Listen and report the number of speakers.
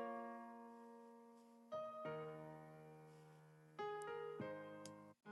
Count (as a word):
zero